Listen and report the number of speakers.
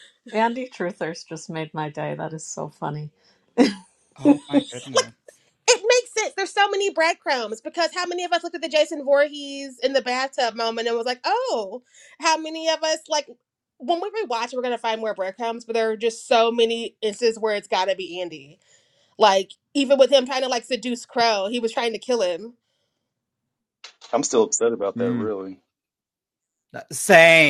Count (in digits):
4